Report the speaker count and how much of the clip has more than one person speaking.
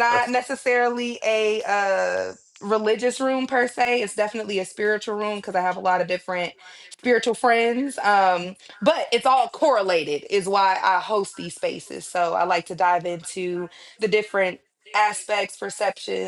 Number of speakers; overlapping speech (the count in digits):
1, no overlap